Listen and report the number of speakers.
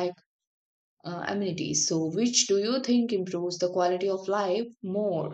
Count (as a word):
one